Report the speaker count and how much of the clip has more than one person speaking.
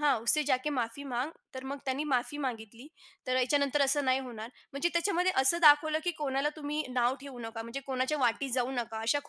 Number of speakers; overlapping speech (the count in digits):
1, no overlap